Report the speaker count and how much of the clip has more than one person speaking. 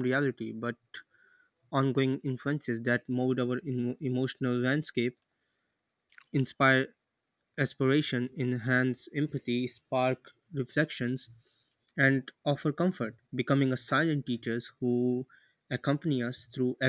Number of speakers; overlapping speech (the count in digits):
1, no overlap